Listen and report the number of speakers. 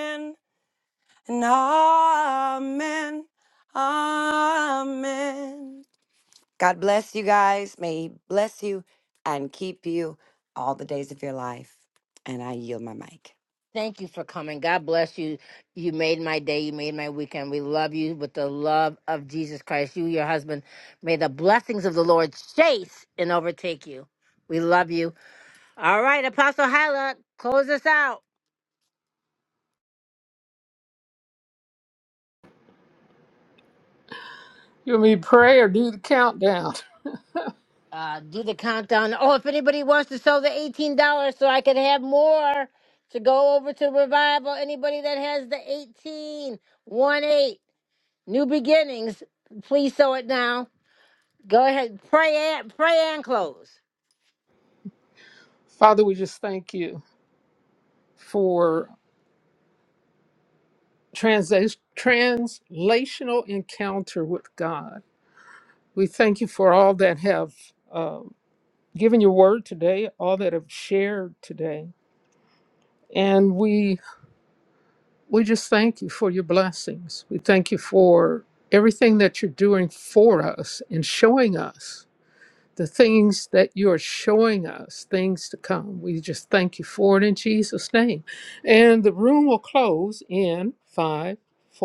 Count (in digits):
3